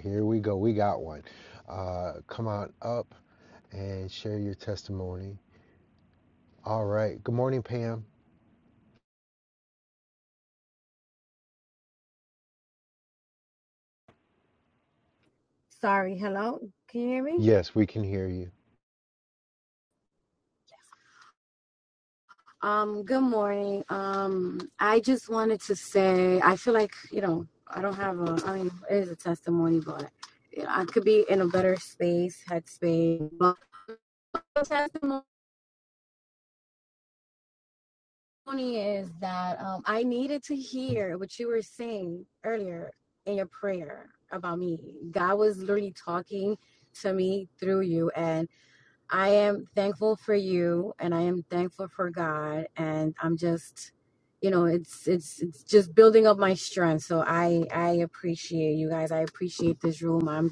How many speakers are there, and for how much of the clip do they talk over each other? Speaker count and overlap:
two, under 1%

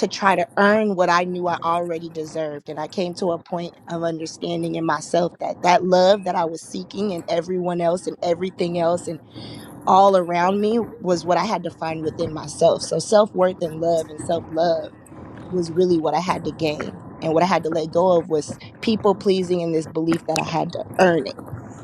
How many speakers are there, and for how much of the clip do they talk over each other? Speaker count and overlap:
one, no overlap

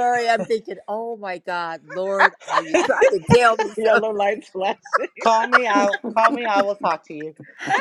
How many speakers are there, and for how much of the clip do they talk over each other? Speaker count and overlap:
three, about 3%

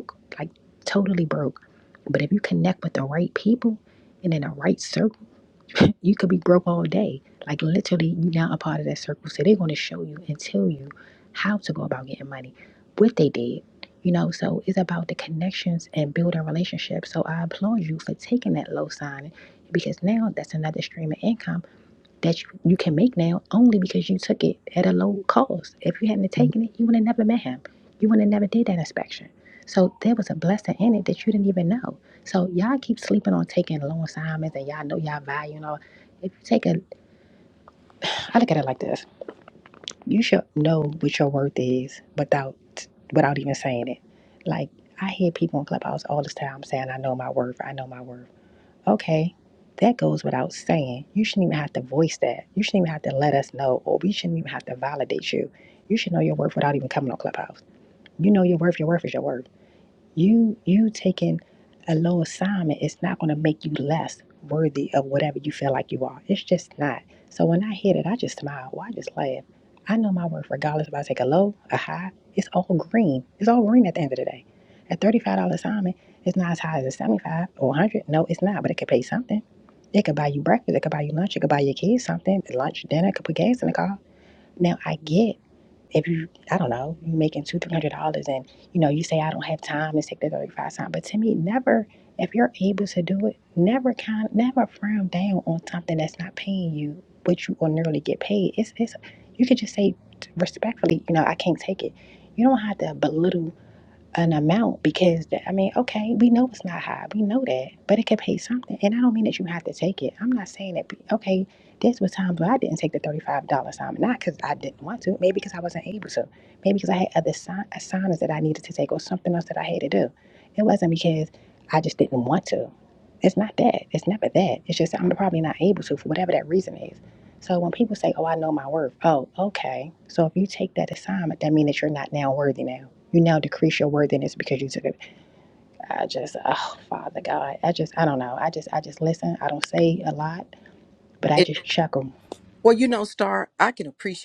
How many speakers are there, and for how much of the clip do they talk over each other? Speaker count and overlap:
two, under 1%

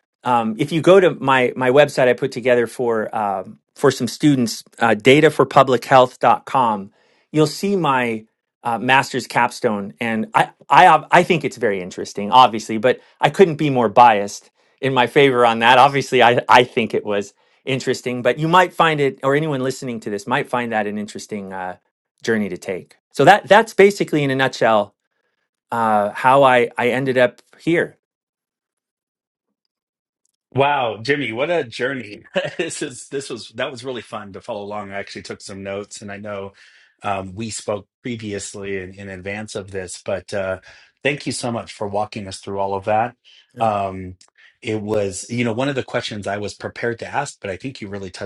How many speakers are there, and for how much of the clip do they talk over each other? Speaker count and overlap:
two, under 1%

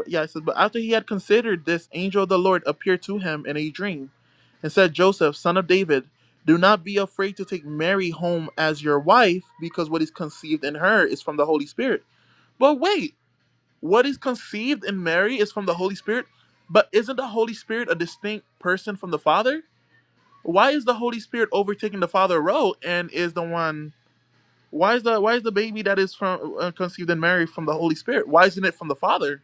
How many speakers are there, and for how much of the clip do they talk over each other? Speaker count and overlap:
one, no overlap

